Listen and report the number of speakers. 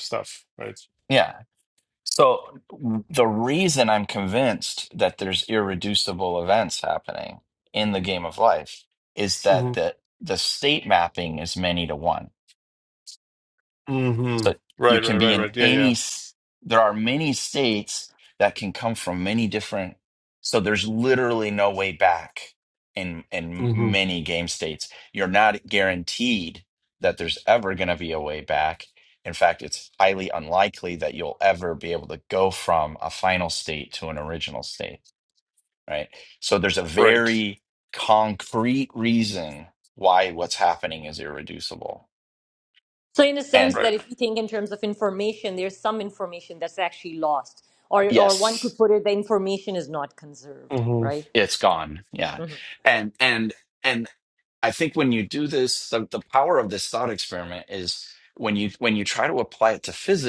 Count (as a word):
three